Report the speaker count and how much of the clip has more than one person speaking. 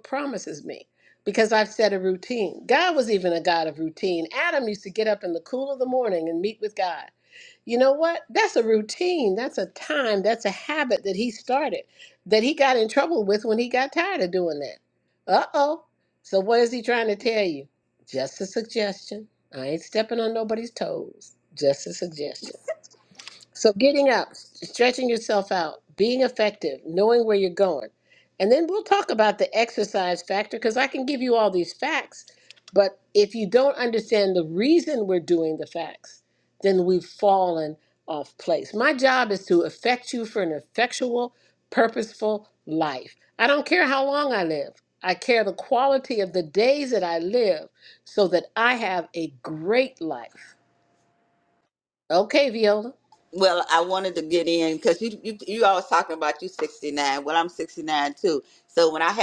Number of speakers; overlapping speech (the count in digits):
2, no overlap